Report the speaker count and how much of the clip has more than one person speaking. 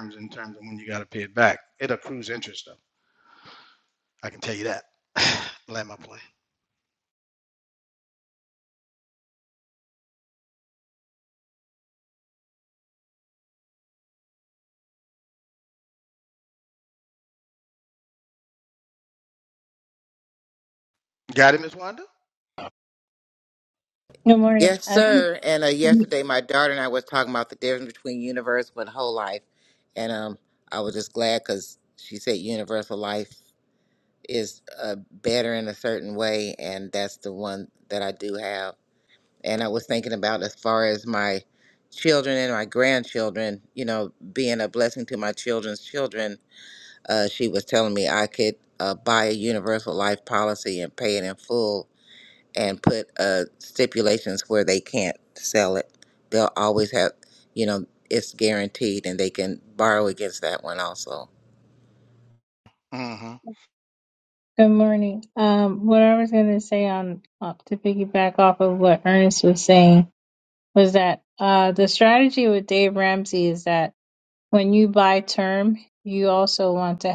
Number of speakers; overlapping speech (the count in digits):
3, about 1%